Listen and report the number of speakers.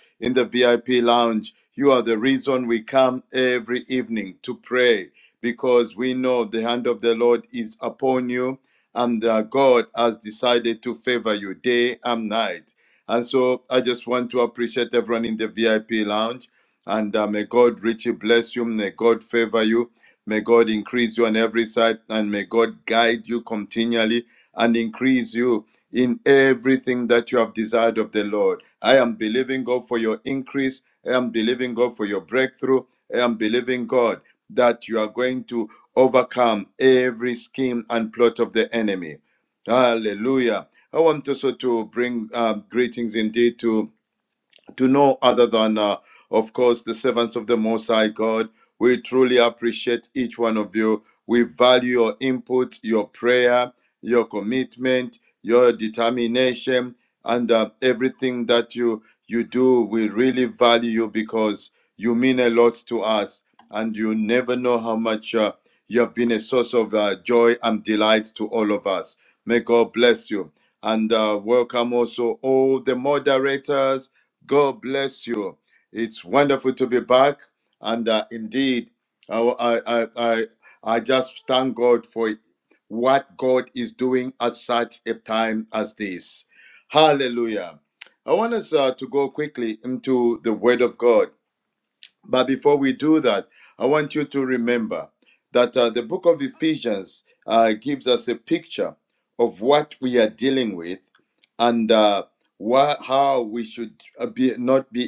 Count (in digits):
1